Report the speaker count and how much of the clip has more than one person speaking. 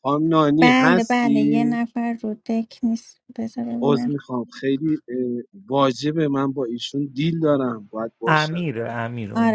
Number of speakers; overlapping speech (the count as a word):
three, about 21%